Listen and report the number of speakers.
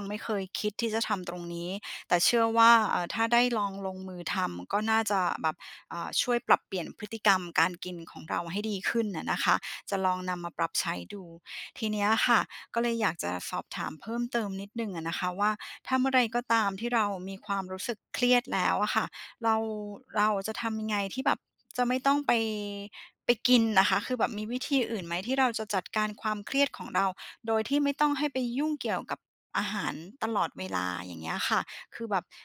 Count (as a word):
one